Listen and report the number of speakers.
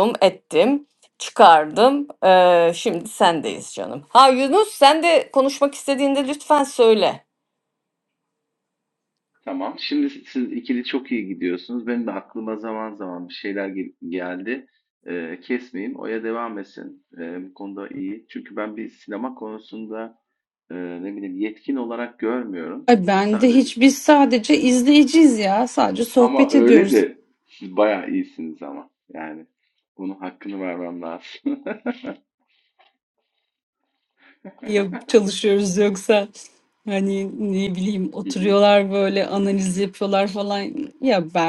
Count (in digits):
3